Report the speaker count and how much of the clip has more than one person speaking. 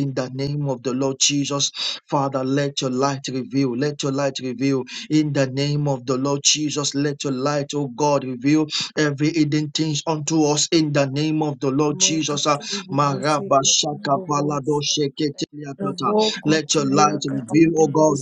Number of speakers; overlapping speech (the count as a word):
two, about 22%